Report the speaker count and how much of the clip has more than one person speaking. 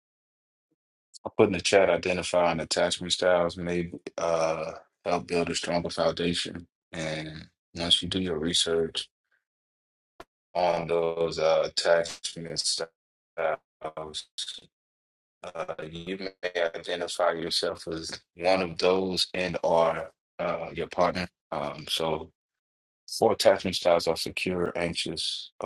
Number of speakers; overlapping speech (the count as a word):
one, no overlap